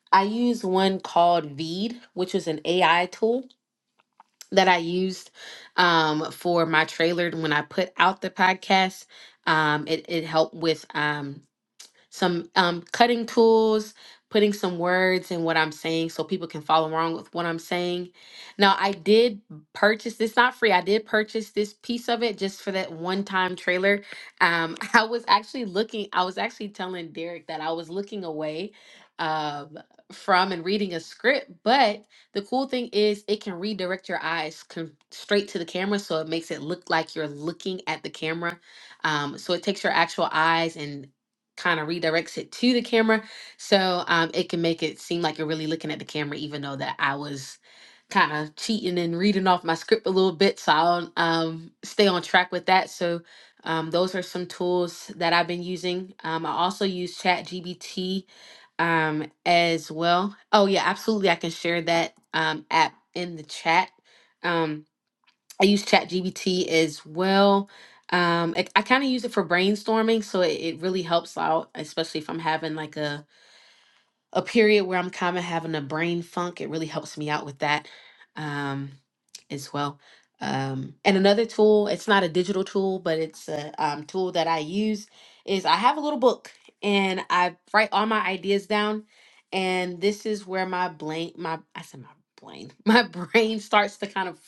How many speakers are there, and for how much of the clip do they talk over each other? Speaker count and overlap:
one, no overlap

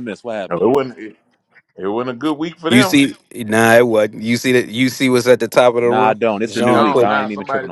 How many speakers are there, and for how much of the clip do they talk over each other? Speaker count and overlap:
three, about 24%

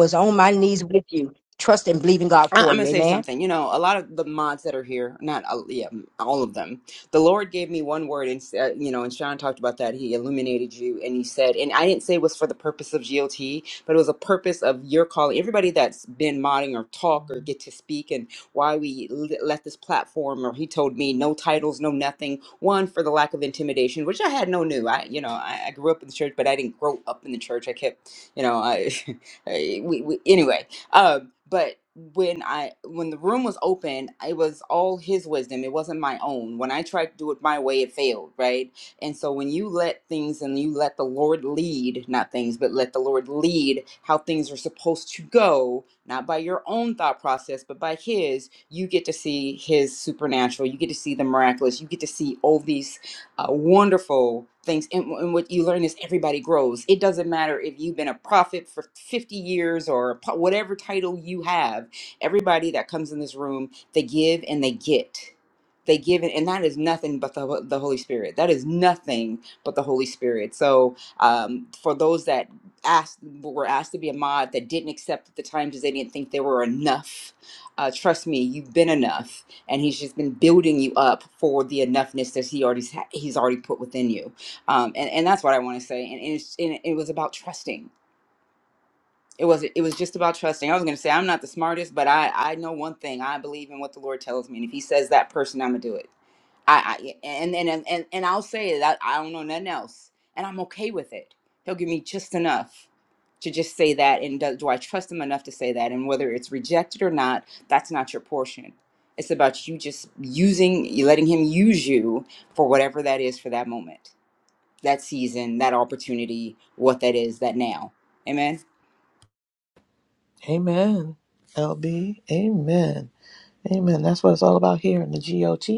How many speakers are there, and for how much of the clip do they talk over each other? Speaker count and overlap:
three, about 1%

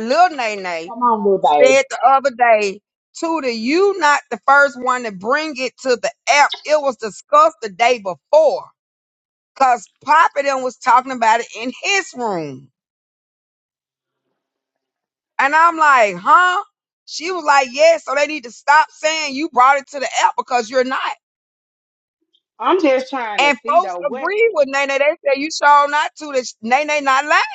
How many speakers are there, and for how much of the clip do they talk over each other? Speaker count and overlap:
two, about 4%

